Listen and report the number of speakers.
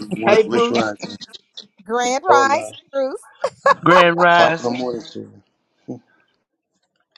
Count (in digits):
3